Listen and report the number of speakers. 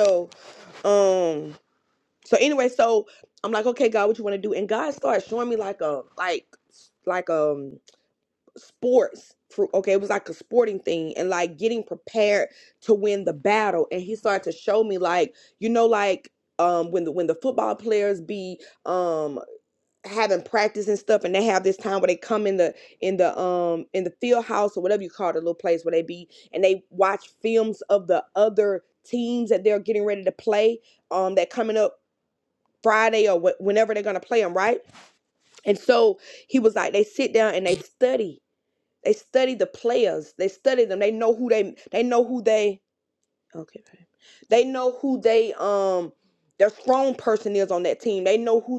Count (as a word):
one